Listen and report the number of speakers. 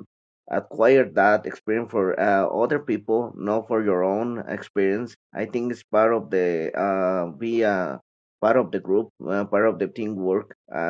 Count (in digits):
1